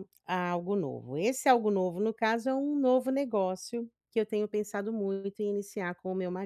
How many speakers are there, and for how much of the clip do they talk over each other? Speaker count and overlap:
1, no overlap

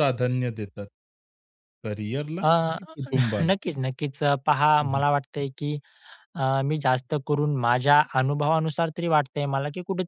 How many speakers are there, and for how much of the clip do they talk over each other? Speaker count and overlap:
2, about 3%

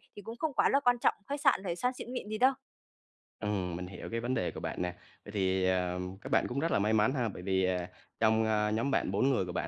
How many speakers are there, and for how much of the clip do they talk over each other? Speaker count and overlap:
2, no overlap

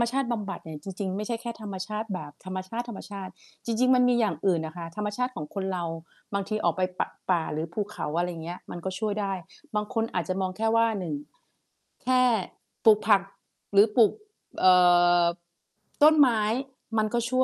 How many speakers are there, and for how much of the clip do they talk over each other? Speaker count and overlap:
1, no overlap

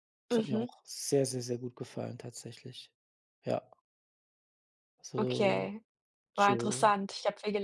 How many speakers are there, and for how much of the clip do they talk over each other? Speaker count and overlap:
2, about 16%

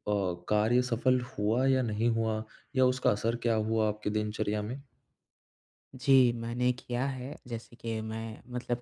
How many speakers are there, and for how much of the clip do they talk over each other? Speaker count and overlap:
2, no overlap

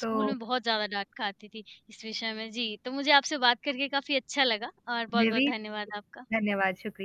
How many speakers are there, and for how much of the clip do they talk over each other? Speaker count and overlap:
2, about 10%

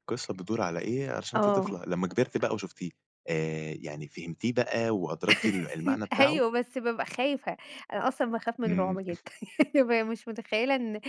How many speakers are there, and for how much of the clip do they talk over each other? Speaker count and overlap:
2, about 9%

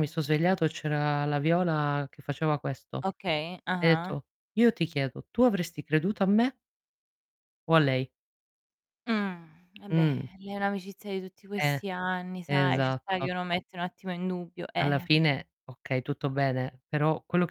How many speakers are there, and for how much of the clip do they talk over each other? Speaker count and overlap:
2, about 11%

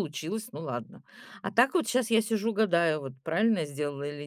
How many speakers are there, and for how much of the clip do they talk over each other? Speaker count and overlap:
1, no overlap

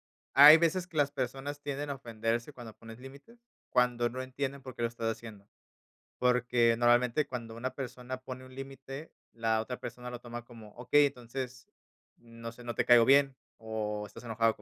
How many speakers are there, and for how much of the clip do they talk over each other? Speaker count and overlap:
1, no overlap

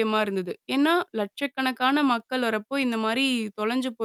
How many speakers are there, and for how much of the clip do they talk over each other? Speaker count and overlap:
1, no overlap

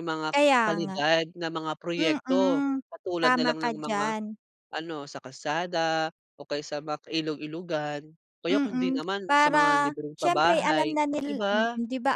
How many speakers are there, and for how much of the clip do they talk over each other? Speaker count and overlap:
2, about 41%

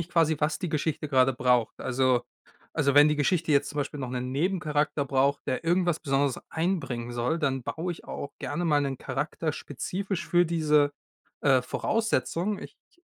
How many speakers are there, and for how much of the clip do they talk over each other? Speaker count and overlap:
1, no overlap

